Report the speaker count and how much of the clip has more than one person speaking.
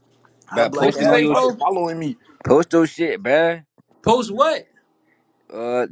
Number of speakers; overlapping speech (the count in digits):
3, about 17%